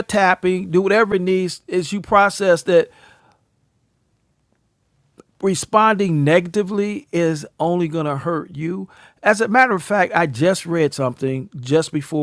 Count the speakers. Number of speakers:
1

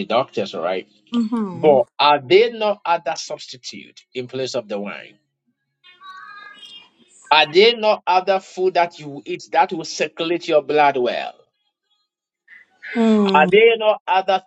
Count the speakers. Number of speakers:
2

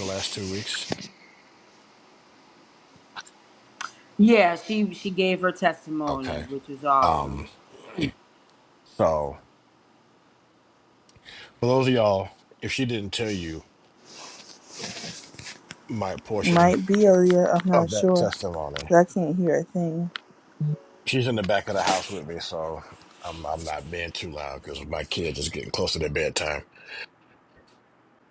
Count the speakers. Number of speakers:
3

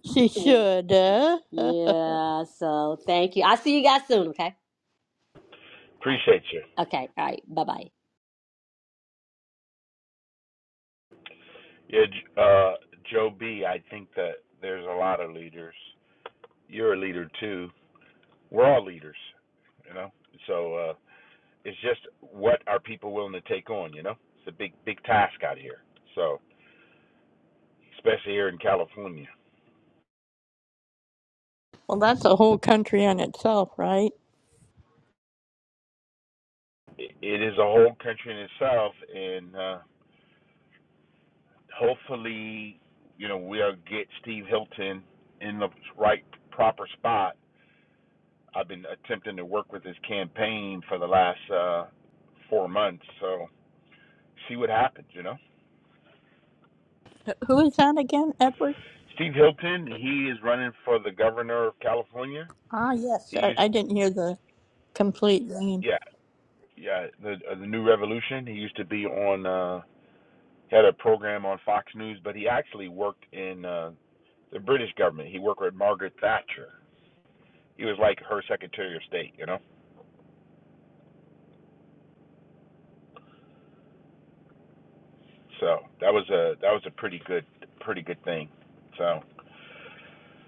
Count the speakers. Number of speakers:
3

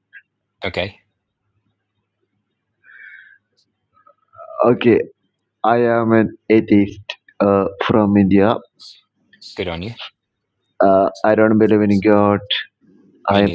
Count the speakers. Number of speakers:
2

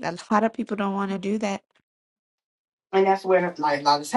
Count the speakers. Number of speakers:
2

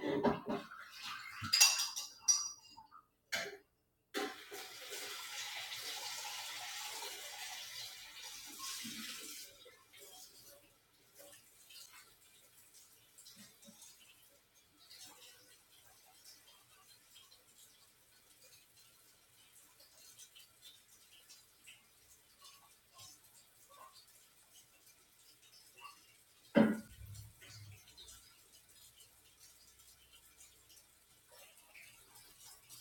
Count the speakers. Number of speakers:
0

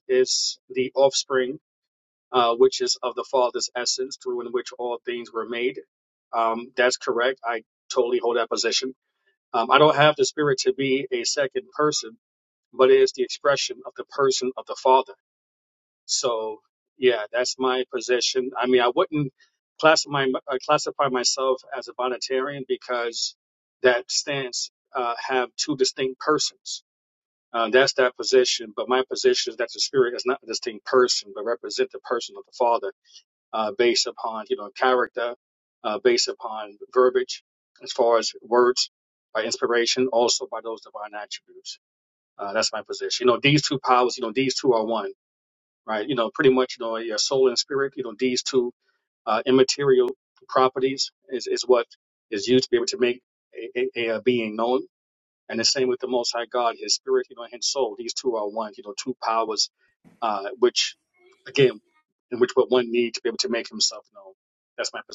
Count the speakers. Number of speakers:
1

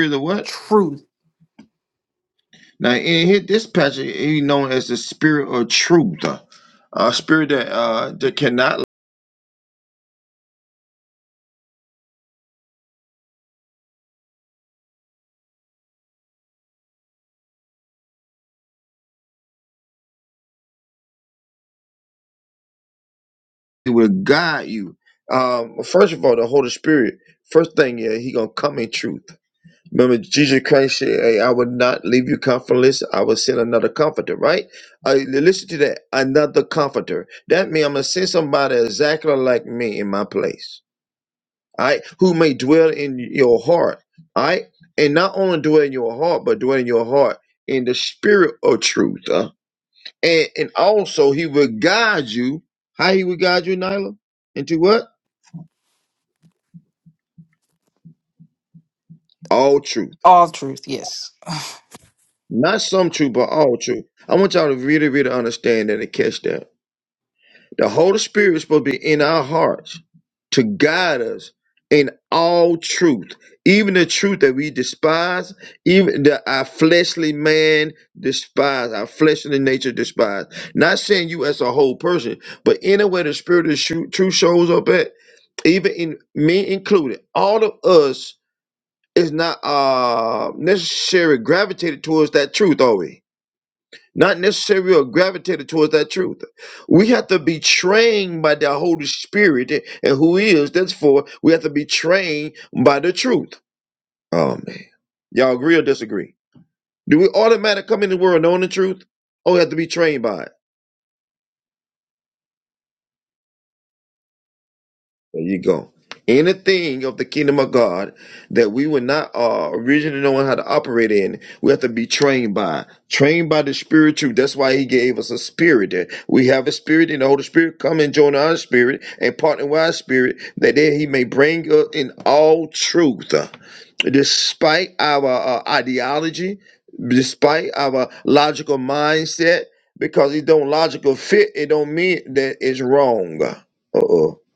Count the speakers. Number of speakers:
2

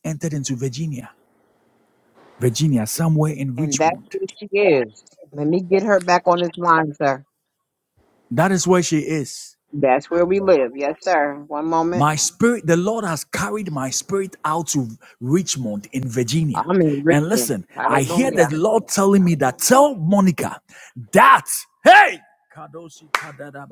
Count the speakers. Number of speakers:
2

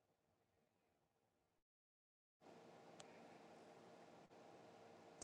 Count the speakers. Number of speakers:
0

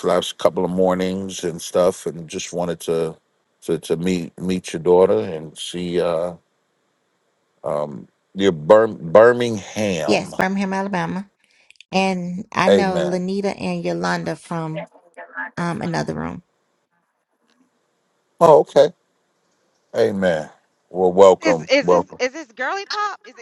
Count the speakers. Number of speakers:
3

